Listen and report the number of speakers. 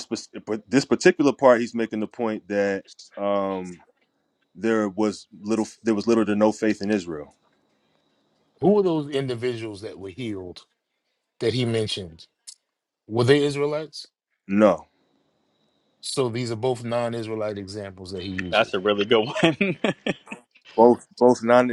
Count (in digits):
3